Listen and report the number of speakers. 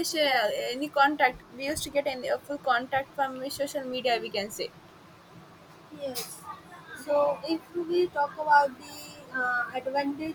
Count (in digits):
2